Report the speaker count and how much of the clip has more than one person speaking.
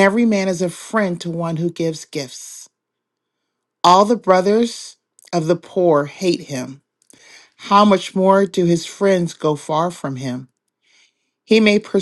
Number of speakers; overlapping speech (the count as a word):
one, no overlap